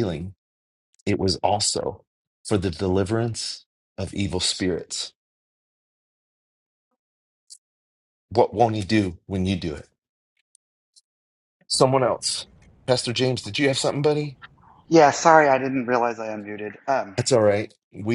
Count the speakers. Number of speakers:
two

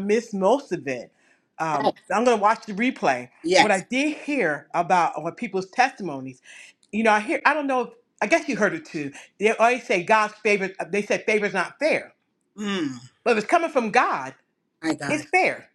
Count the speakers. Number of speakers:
two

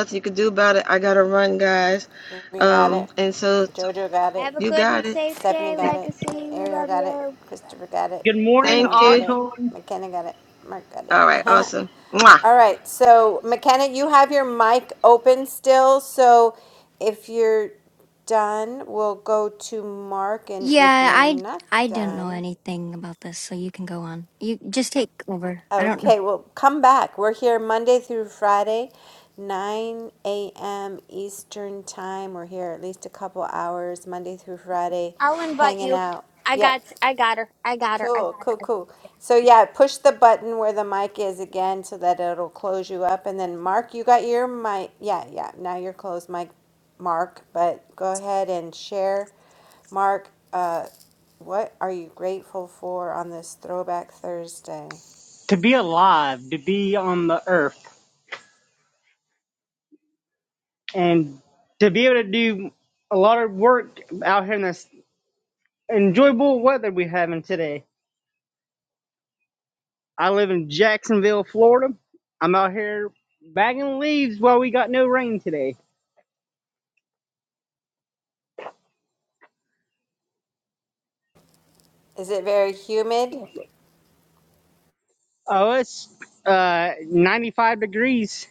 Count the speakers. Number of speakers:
five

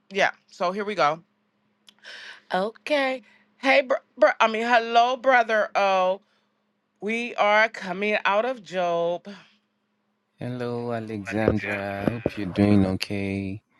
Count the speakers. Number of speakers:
two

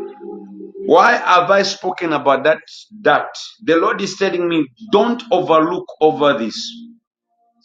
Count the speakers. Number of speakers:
one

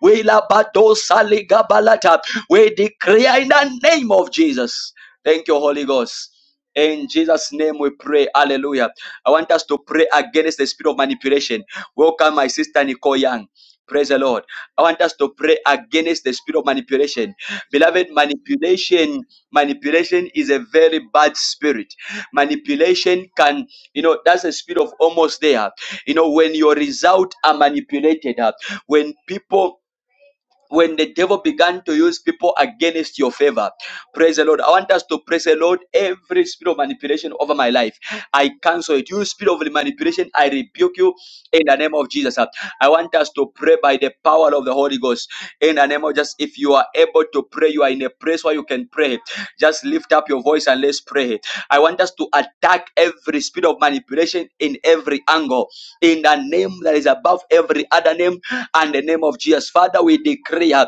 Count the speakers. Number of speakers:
one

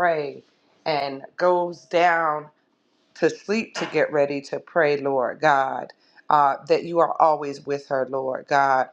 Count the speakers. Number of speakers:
one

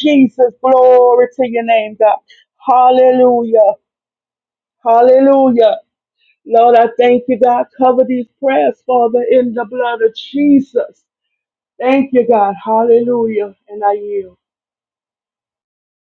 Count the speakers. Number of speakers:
one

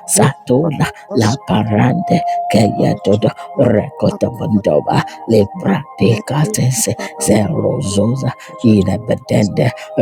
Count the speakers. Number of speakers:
two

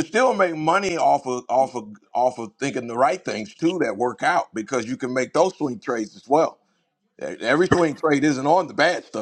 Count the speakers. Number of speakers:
one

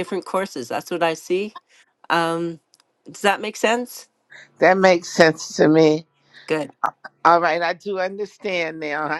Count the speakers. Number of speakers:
two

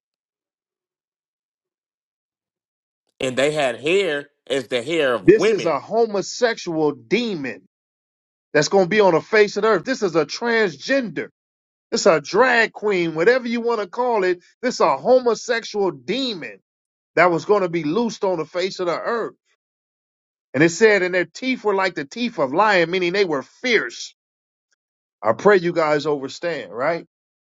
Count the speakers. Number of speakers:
two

